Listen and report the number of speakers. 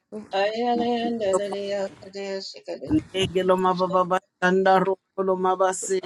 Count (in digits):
3